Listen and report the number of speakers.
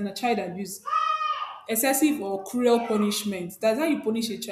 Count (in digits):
1